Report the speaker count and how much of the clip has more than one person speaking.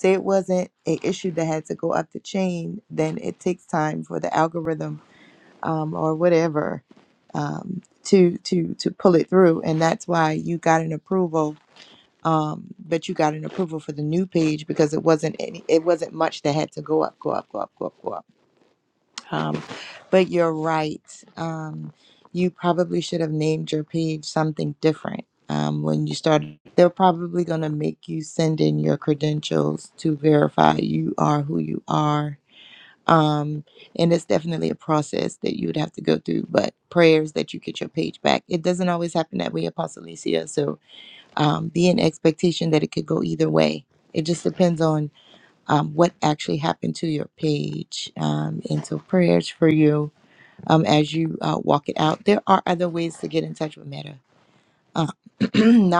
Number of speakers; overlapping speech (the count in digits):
1, no overlap